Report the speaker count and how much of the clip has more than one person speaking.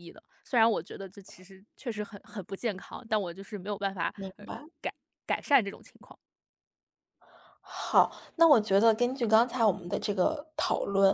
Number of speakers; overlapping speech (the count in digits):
2, about 3%